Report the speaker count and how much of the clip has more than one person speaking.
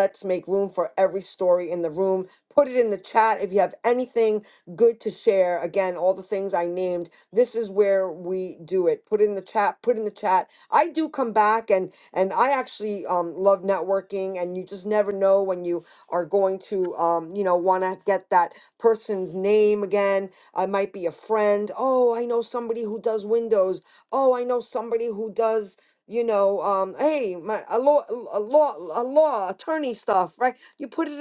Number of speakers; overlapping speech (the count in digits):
1, no overlap